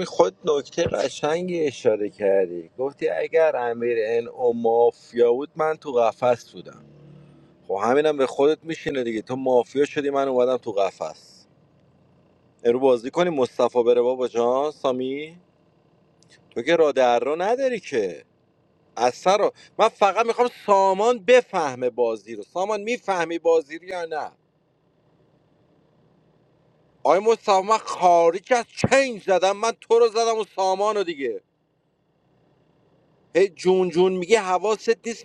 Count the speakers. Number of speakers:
one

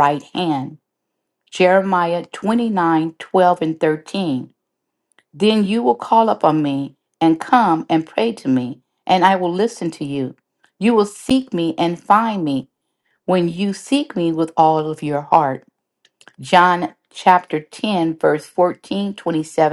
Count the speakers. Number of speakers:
one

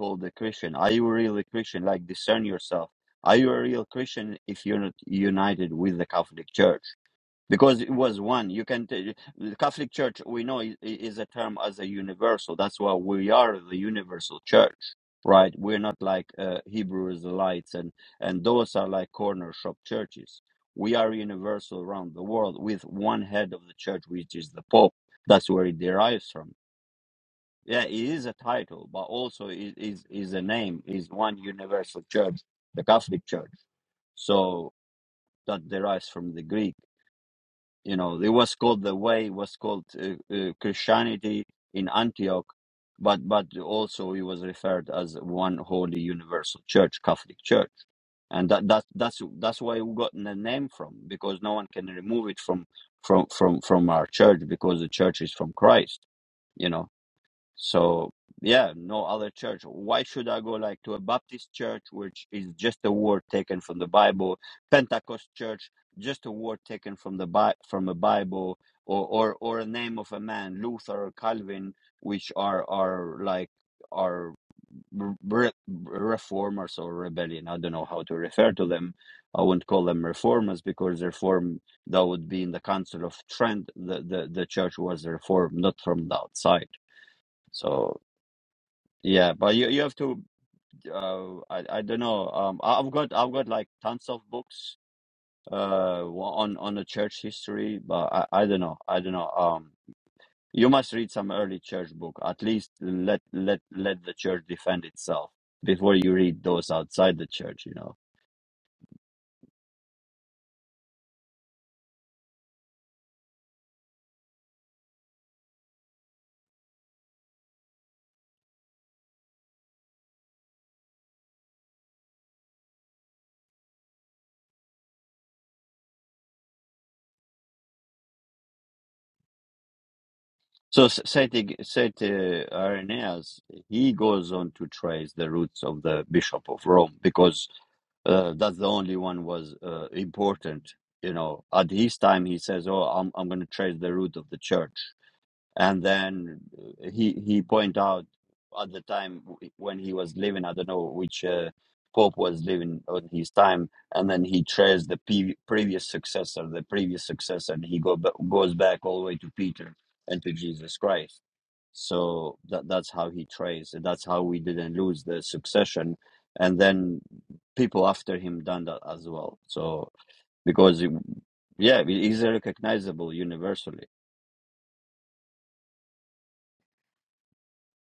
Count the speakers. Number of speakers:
one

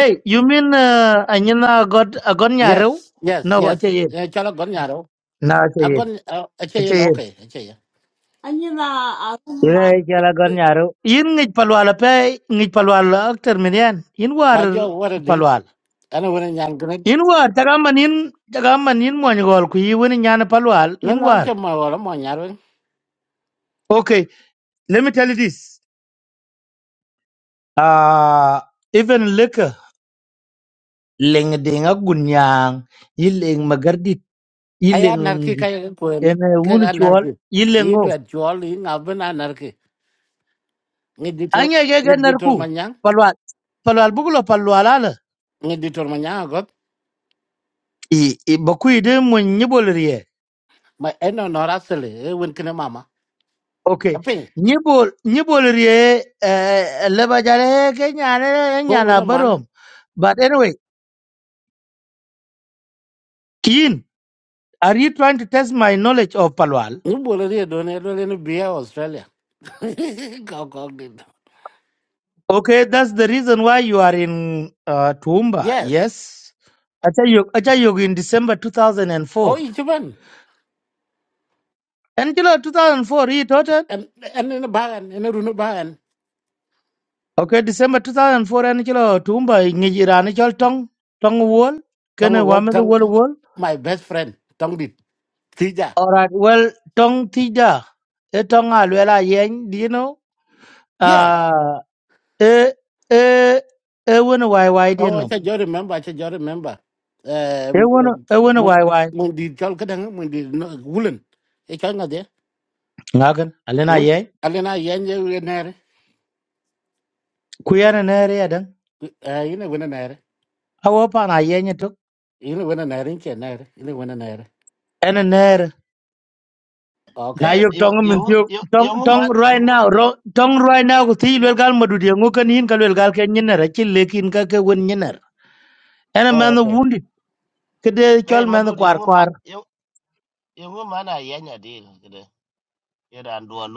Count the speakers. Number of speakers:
four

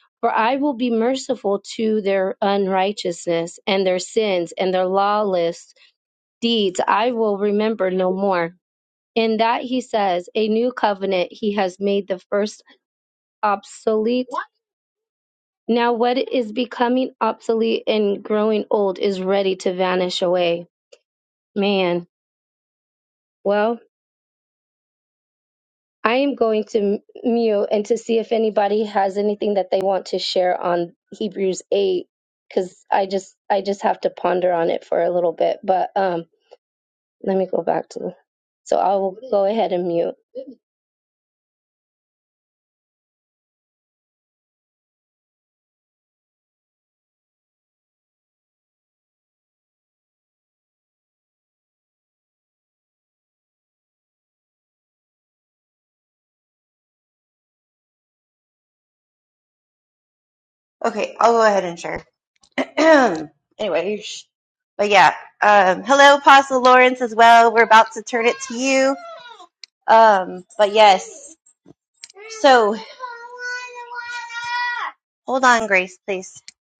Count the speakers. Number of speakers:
two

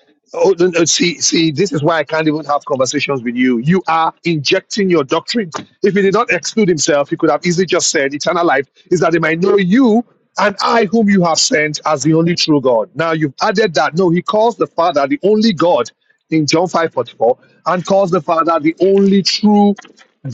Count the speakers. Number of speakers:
one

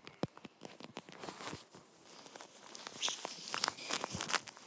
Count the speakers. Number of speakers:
zero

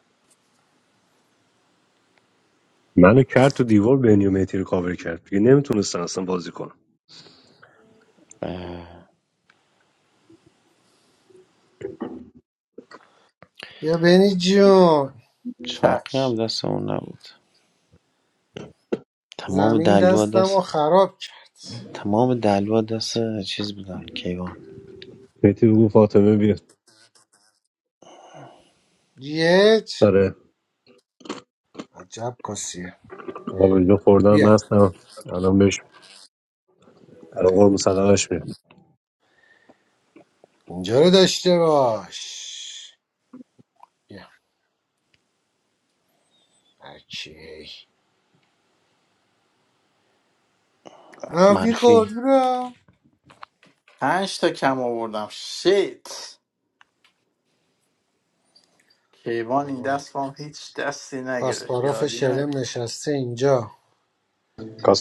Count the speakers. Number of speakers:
four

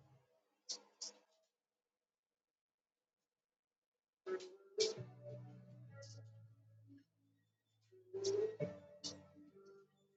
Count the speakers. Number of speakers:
zero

